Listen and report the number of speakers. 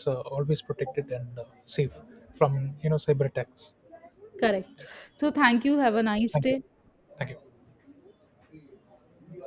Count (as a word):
two